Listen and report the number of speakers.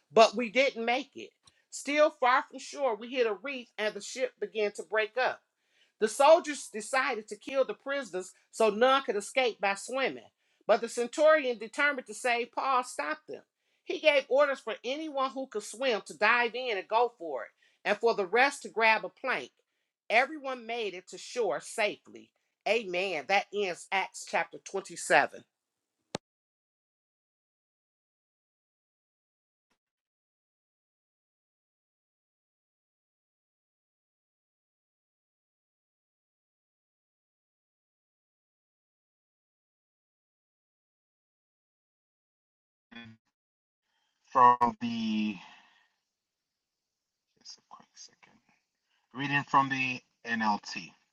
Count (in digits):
2